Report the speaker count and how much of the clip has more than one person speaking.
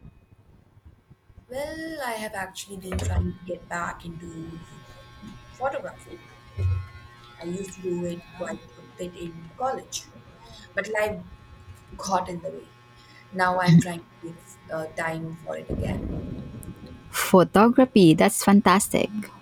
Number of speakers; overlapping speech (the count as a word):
two, no overlap